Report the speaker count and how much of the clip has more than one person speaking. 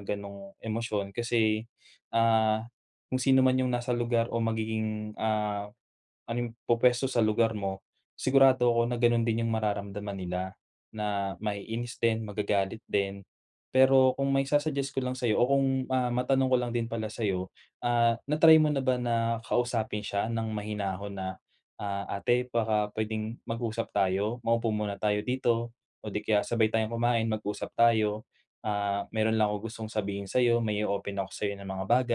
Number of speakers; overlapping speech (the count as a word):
one, no overlap